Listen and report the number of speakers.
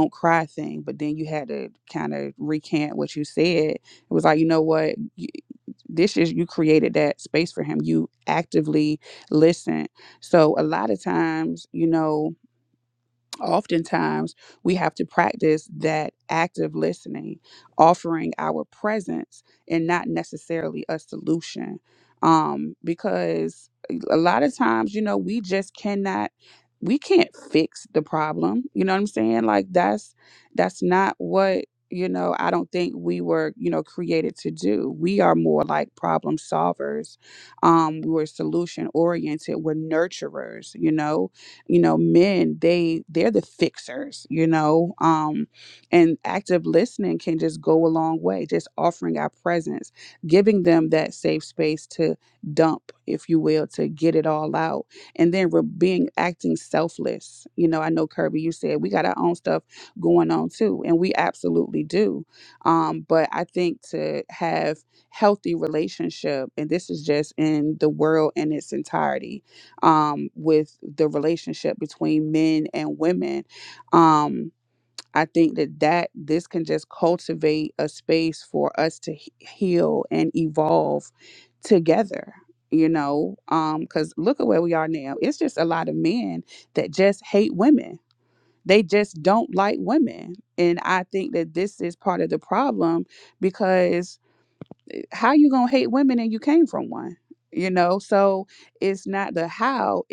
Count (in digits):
1